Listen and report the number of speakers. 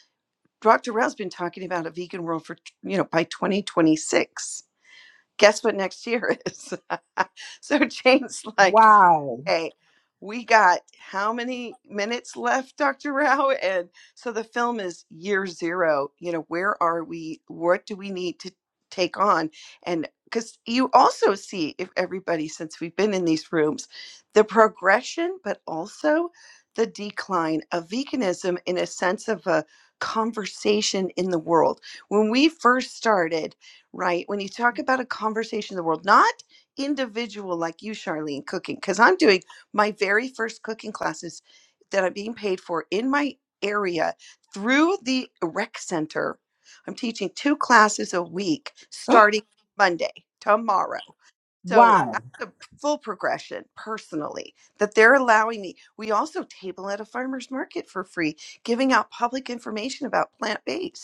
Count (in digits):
2